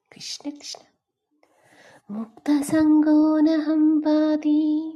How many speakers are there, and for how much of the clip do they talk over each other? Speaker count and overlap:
one, no overlap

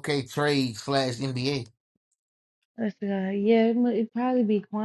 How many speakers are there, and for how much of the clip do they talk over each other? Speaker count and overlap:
two, no overlap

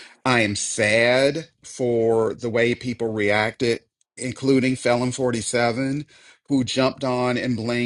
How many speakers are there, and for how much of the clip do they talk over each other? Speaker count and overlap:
one, no overlap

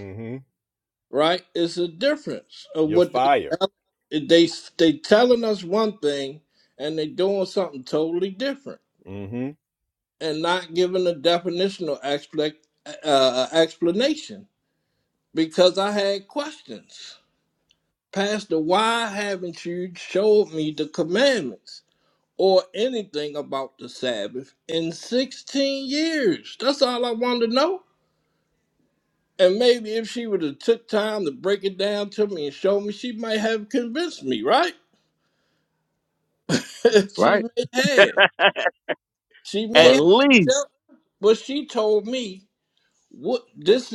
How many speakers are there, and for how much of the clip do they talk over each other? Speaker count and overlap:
three, about 2%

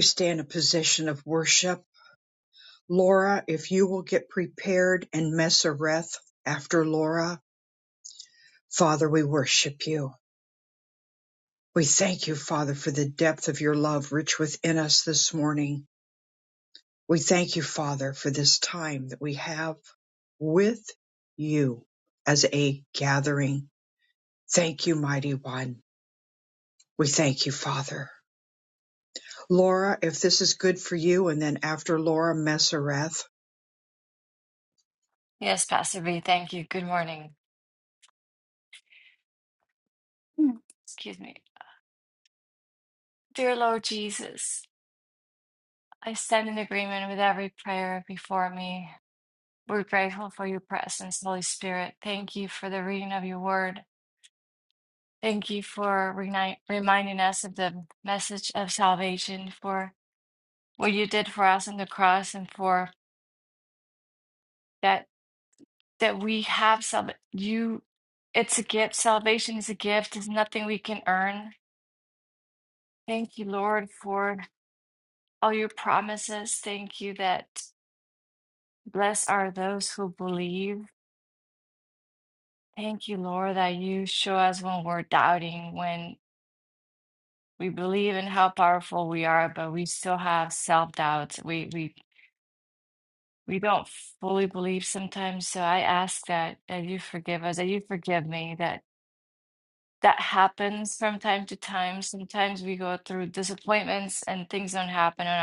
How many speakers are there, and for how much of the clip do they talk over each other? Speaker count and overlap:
two, no overlap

